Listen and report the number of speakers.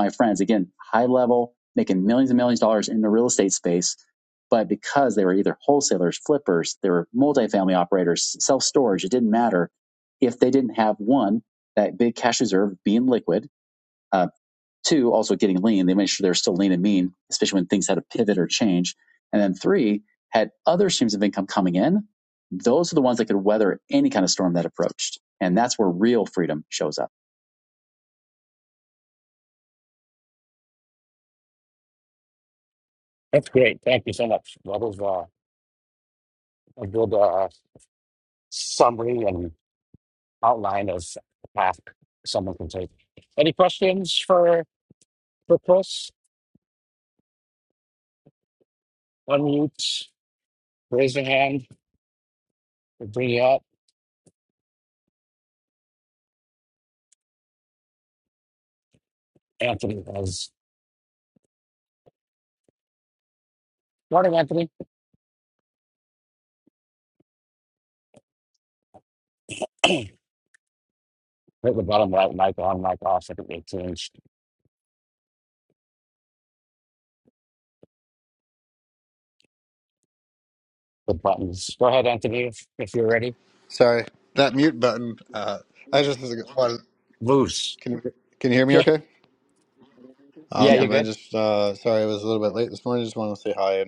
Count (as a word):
three